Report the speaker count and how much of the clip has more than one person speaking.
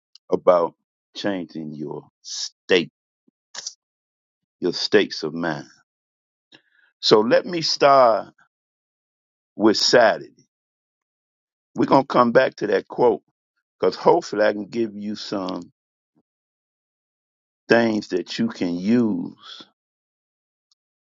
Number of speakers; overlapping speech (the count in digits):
1, no overlap